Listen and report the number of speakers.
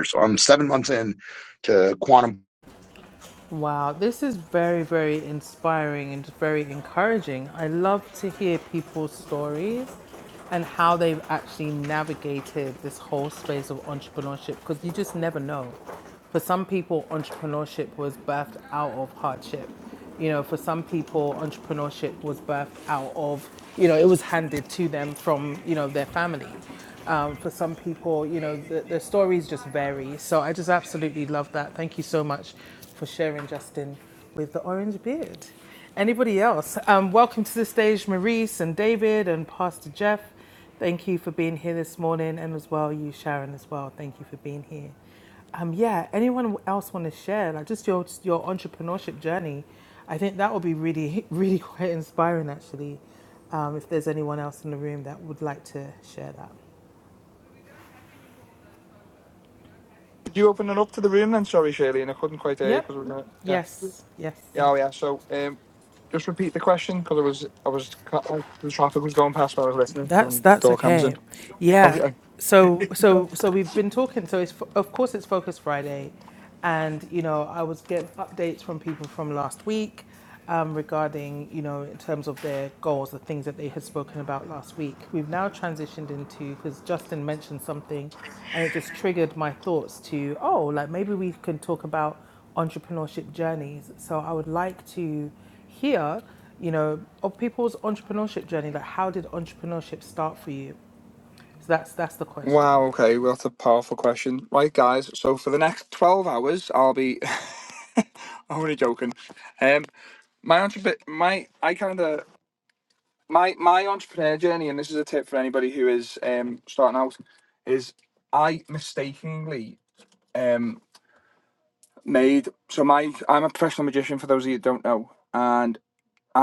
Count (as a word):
three